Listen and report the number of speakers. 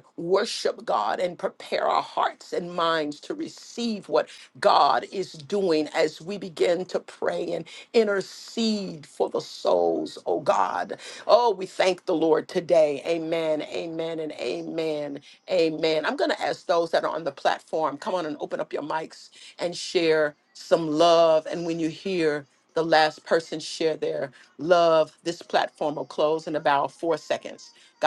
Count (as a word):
one